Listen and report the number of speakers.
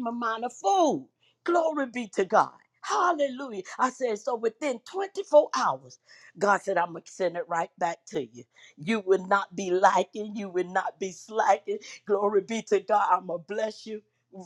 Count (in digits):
1